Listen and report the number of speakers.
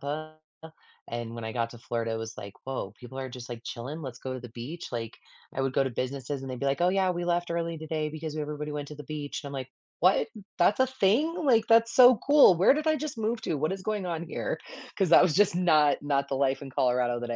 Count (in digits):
1